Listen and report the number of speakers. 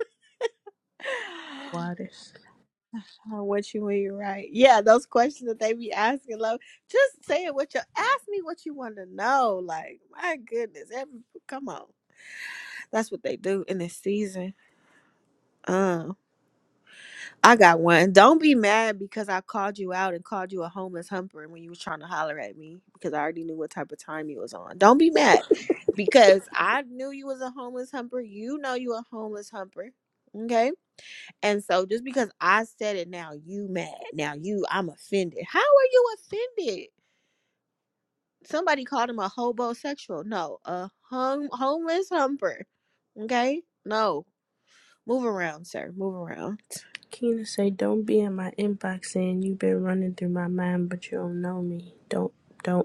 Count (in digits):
2